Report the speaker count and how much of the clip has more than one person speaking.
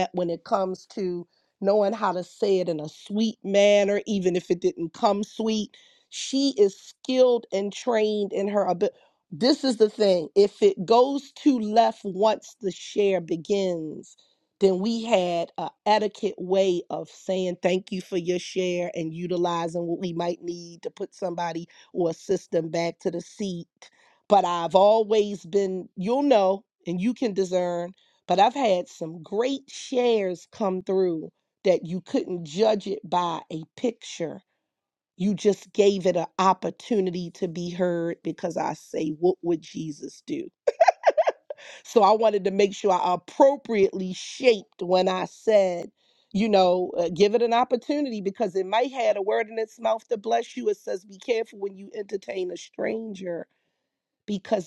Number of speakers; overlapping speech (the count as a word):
one, no overlap